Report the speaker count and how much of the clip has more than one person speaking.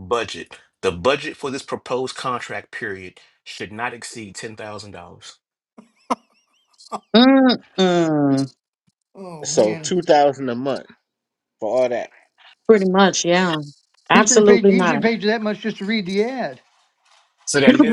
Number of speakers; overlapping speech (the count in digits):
4, about 8%